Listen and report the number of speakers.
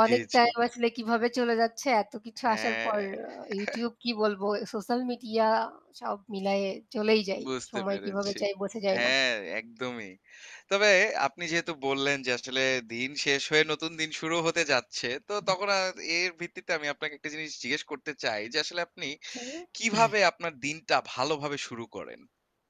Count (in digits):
2